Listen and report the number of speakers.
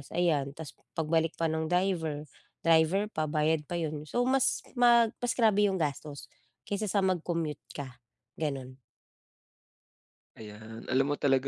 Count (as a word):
two